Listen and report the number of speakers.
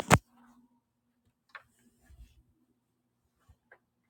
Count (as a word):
zero